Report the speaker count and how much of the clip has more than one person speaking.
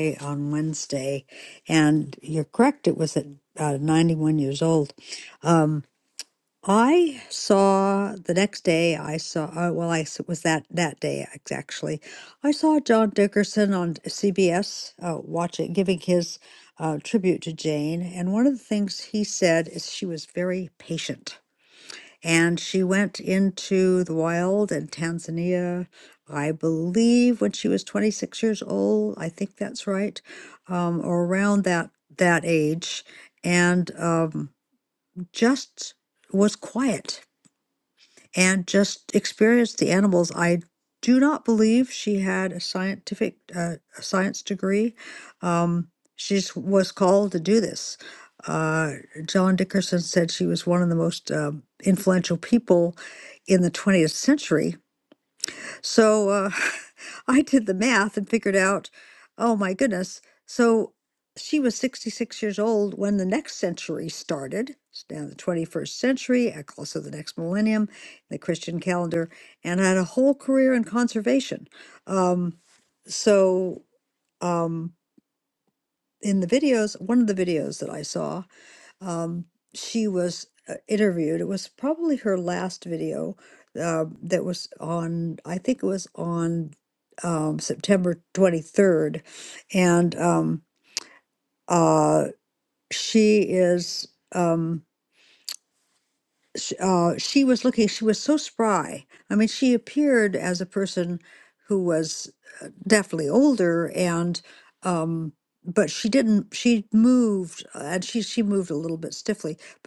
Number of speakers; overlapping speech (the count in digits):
1, no overlap